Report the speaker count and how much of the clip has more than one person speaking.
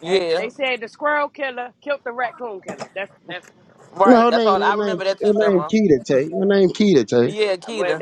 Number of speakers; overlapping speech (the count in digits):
3, about 32%